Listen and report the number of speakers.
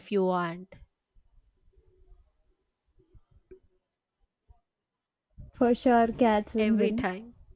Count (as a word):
two